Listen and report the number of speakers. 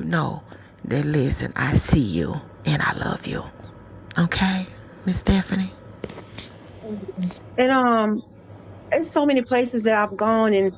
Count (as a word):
two